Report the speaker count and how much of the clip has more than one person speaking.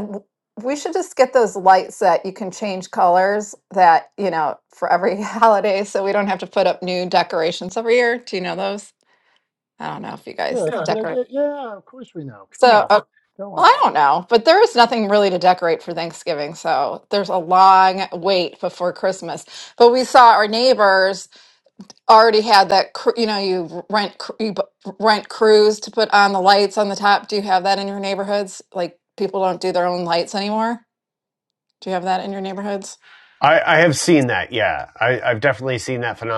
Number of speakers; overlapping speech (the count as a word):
three, about 3%